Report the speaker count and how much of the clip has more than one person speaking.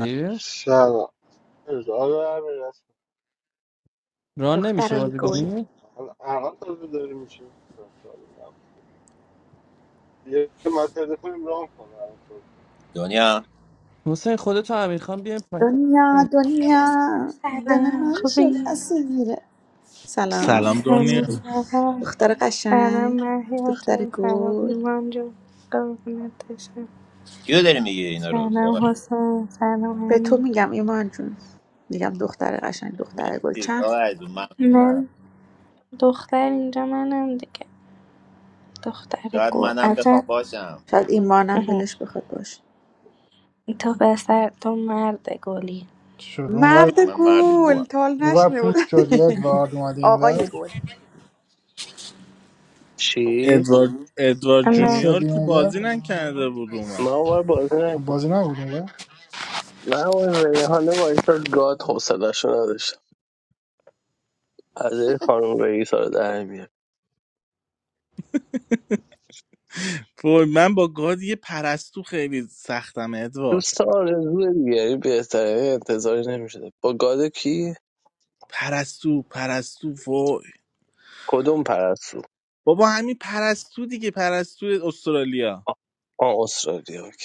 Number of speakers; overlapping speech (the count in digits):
8, about 14%